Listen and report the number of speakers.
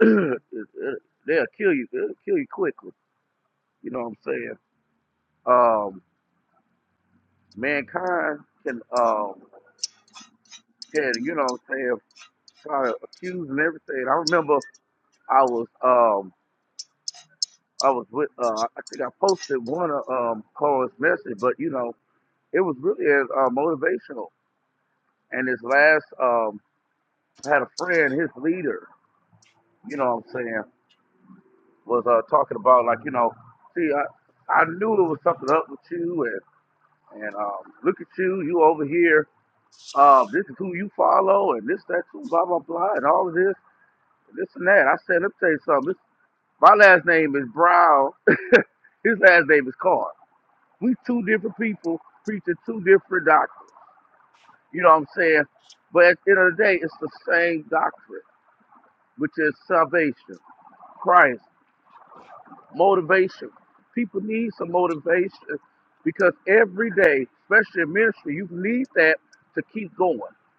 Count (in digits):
1